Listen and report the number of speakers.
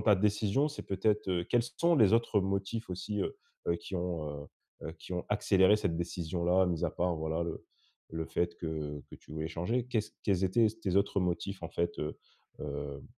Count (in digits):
1